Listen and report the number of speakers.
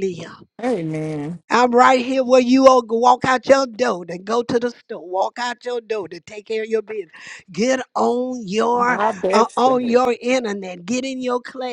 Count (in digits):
2